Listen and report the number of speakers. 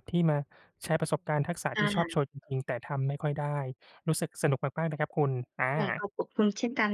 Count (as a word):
two